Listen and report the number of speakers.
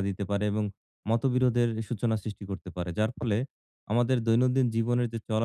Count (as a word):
one